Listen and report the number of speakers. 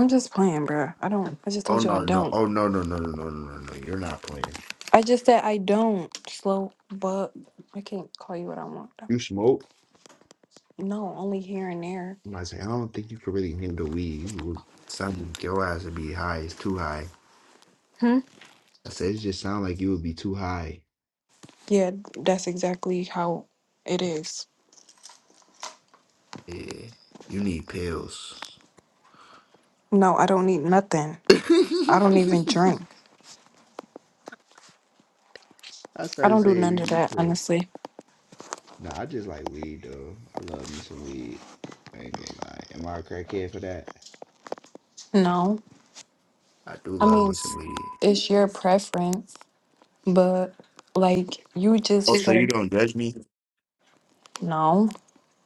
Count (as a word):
two